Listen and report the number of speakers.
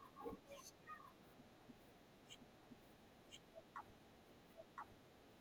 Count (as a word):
zero